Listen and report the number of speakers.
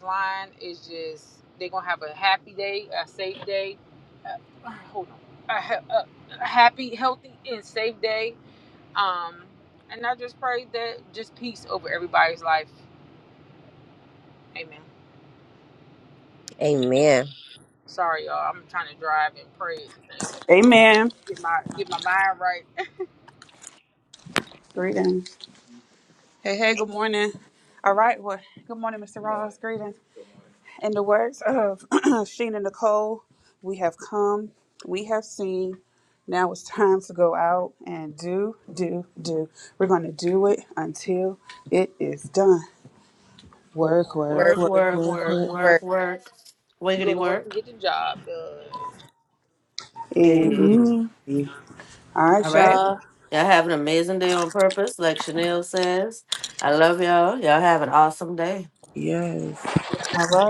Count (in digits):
5